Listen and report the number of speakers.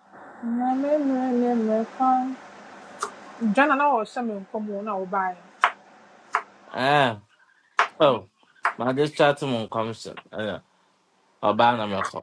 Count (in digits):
2